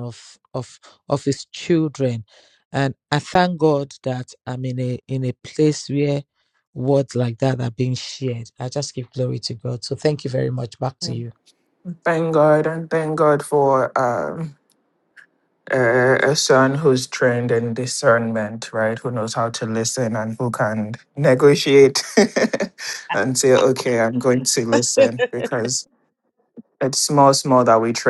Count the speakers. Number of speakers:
2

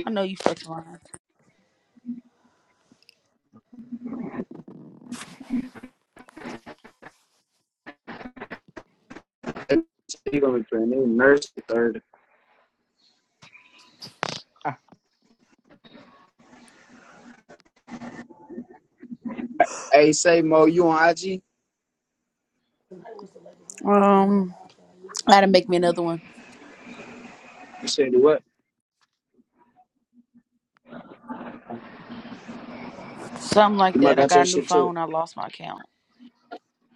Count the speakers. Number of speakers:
2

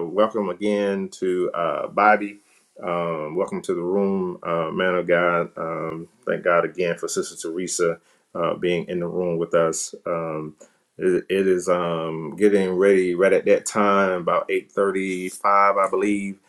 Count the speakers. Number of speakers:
1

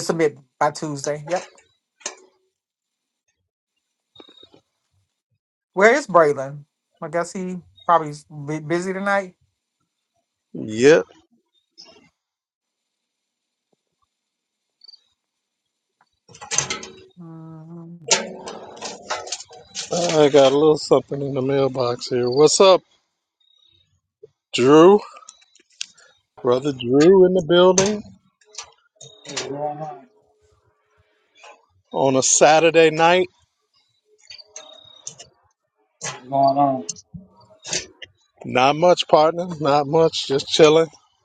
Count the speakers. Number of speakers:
3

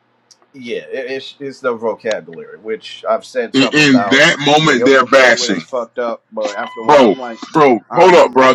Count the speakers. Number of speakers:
2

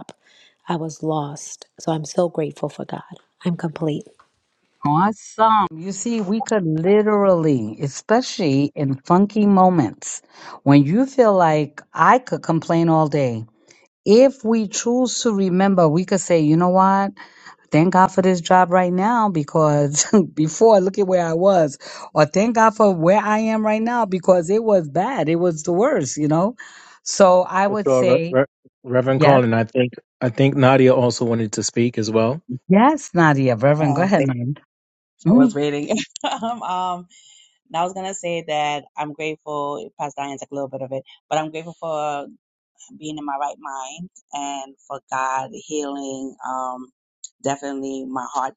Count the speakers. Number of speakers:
4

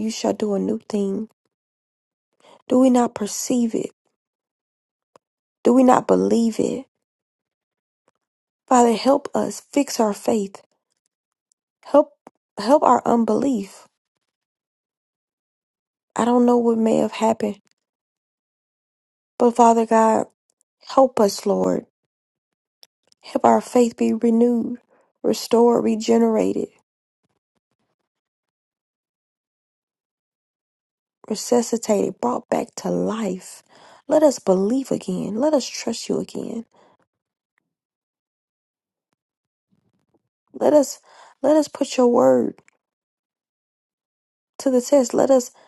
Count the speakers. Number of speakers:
1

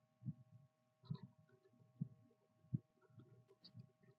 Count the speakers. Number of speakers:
0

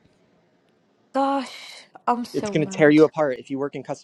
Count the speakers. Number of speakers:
2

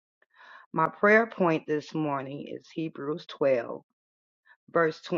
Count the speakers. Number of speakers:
1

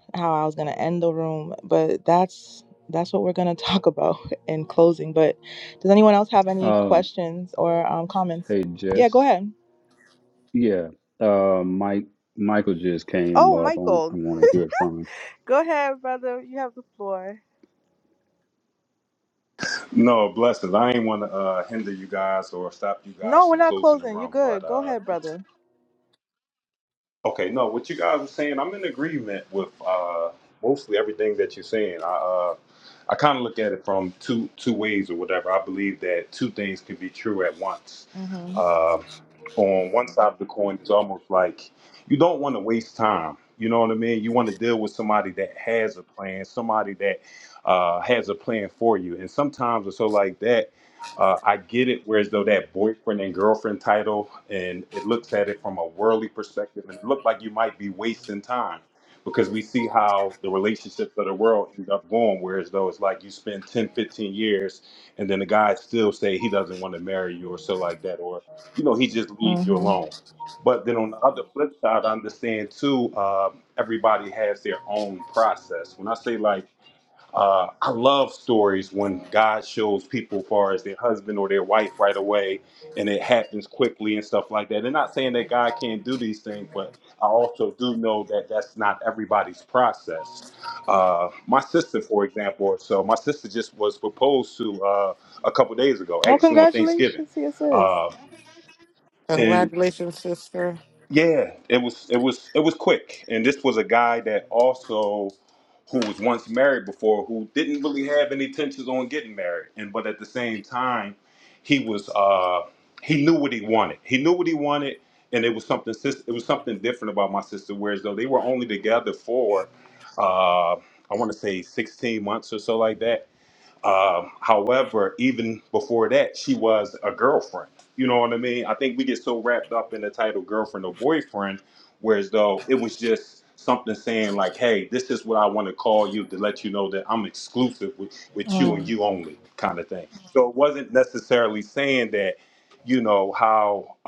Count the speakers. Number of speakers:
4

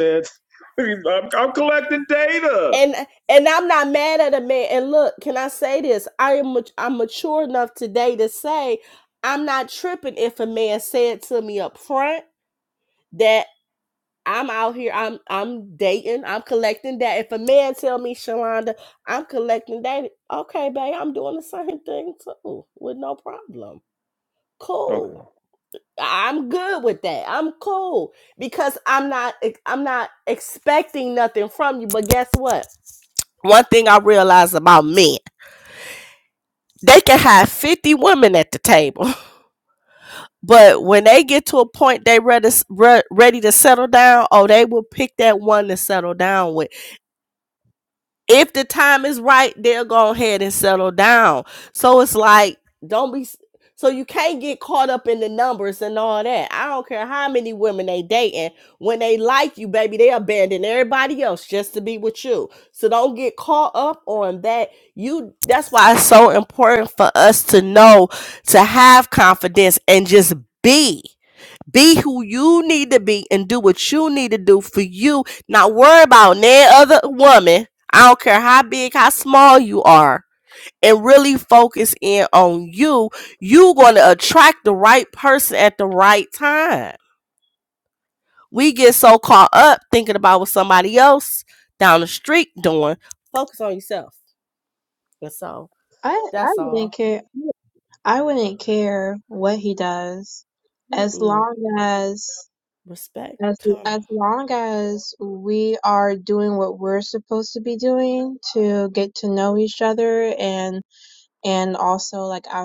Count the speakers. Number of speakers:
3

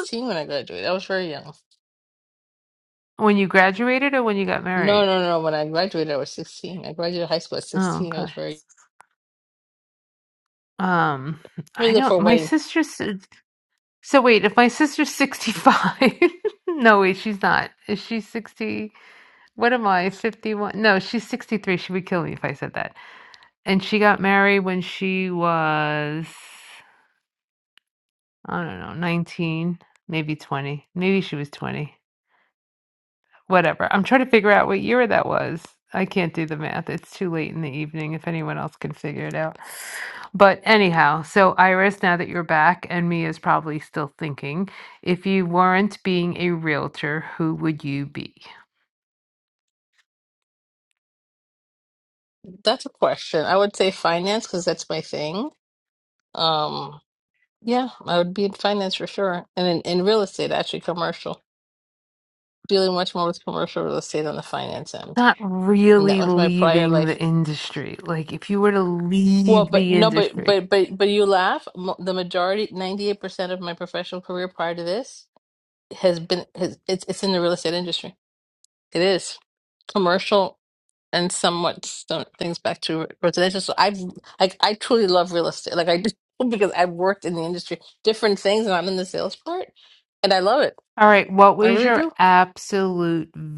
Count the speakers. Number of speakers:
2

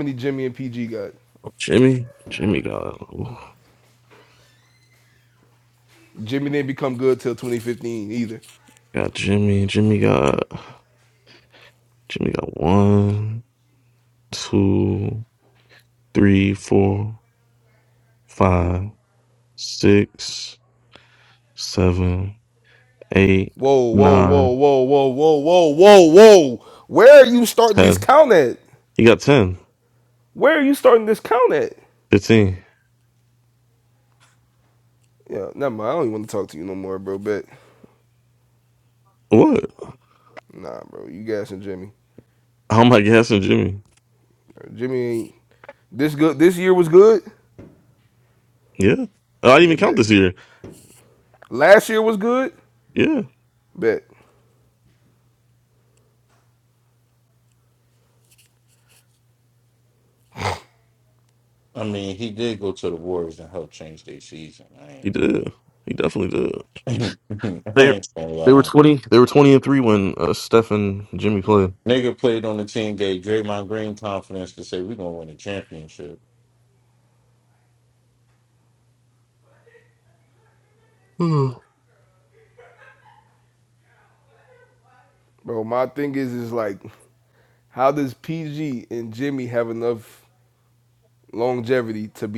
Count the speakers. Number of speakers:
3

